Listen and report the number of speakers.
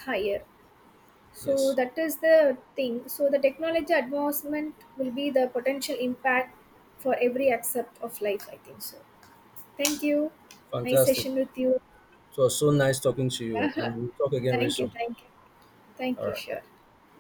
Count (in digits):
2